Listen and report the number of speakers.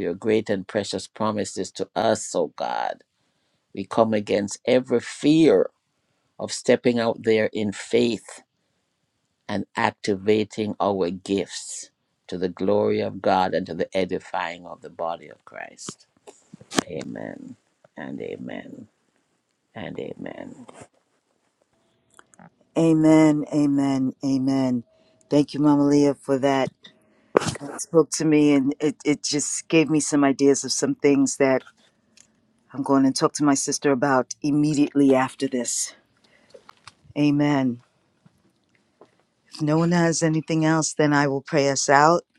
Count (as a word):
two